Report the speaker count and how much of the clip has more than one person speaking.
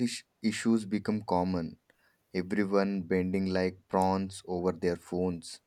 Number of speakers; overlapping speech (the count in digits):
1, no overlap